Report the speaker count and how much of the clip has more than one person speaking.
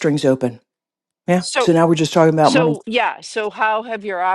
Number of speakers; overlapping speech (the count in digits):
2, about 13%